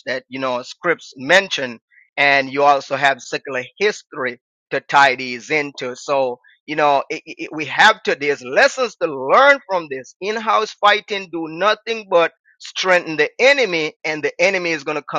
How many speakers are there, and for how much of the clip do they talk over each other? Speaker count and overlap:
1, no overlap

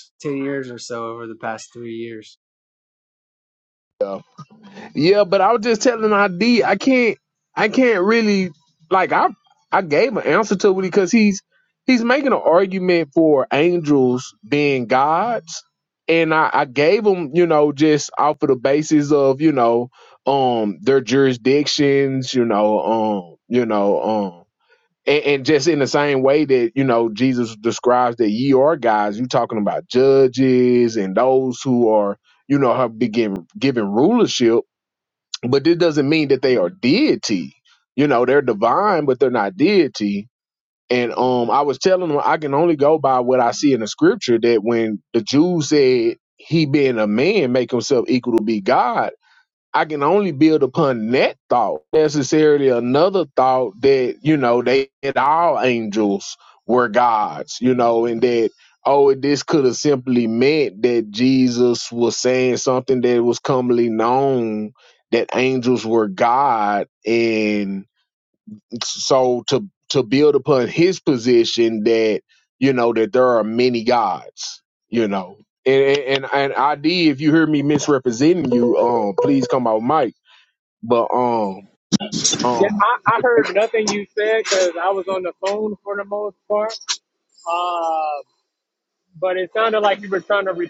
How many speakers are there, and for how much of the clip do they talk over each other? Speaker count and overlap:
3, under 1%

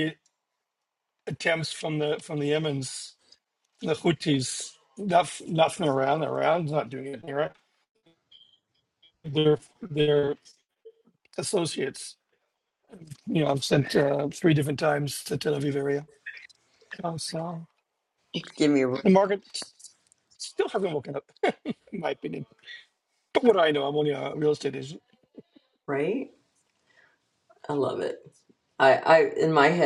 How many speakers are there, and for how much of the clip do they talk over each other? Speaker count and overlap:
2, no overlap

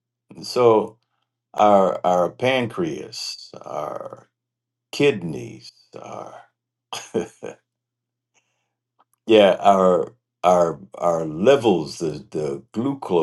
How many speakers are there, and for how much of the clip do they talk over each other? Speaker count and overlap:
1, no overlap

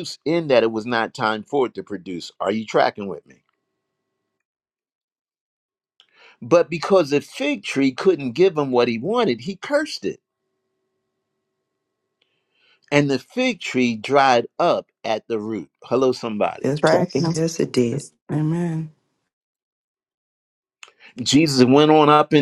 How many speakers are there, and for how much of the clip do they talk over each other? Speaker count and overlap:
3, about 3%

